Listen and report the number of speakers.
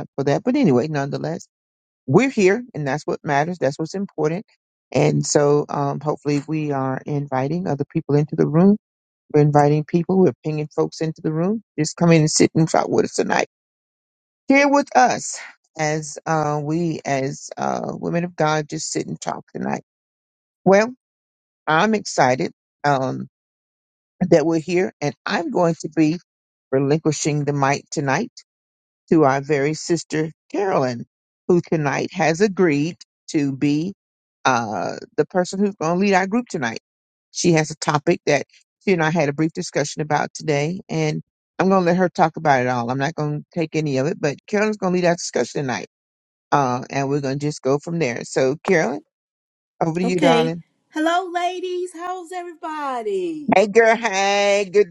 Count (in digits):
2